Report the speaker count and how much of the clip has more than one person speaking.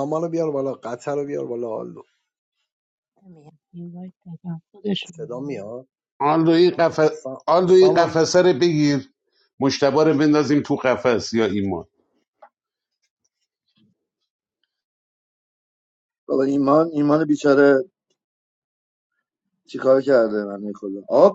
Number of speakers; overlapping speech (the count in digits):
4, about 3%